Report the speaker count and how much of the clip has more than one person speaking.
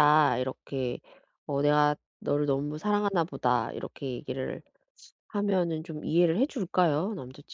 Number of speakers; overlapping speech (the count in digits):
1, no overlap